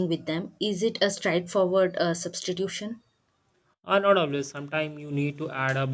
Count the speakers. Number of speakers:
2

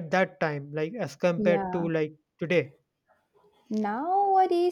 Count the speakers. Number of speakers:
2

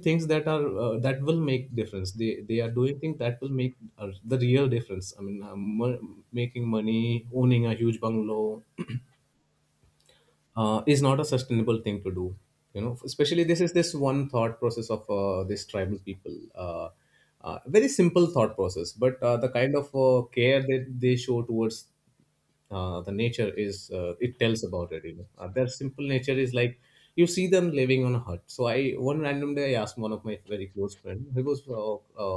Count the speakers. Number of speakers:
1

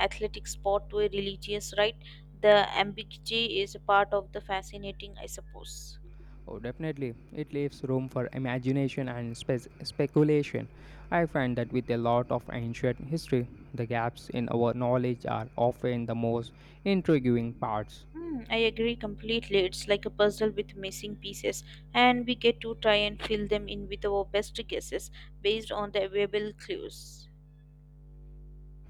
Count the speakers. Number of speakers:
2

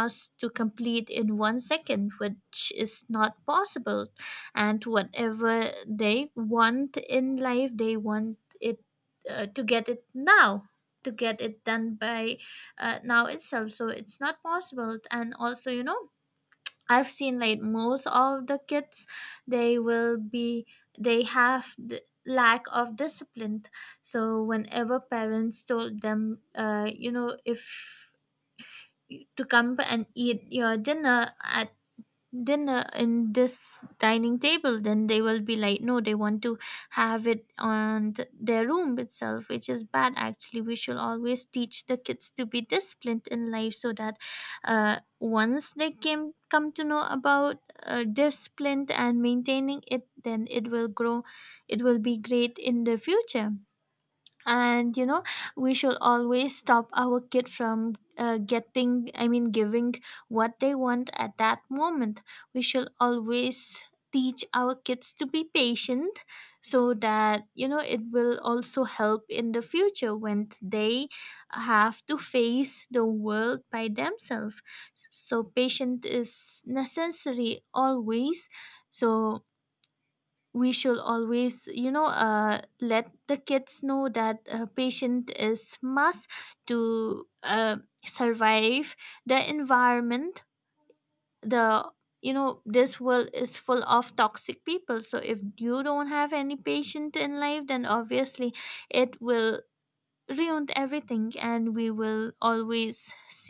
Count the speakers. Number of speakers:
1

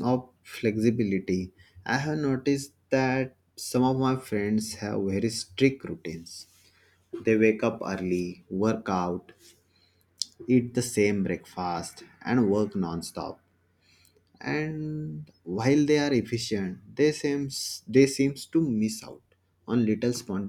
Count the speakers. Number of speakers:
1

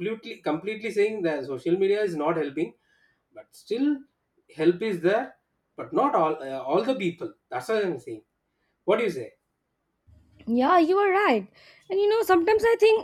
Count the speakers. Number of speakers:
2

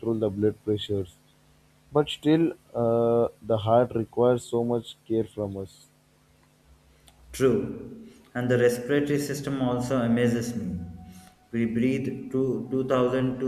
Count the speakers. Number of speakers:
2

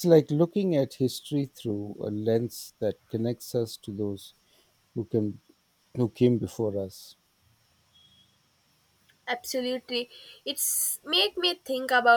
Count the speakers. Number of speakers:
2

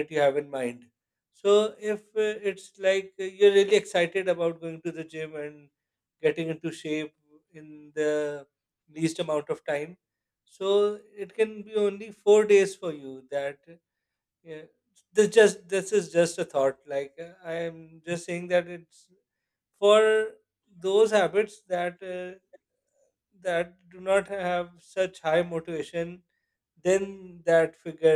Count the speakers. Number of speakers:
1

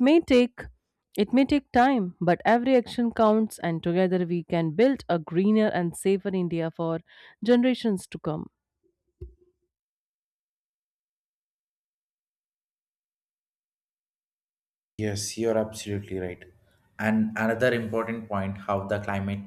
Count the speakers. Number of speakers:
2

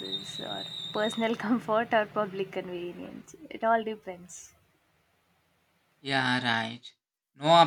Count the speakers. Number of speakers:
2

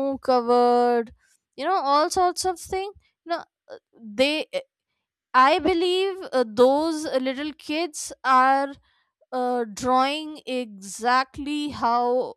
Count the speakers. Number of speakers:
1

